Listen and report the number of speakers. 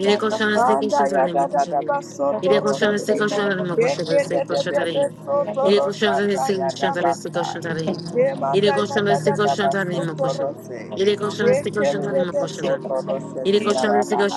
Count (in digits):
2